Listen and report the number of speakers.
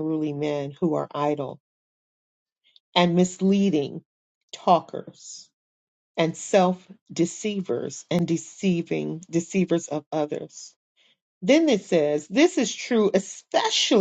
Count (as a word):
one